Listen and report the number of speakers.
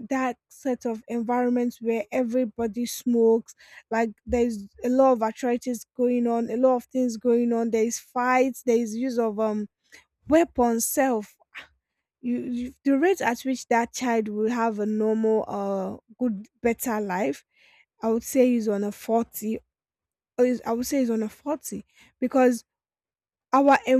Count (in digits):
1